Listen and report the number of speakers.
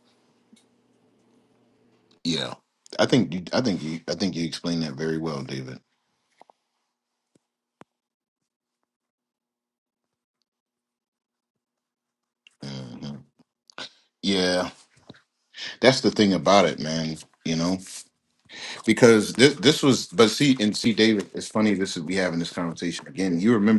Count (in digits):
1